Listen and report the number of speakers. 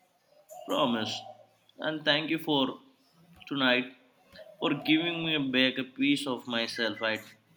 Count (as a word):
one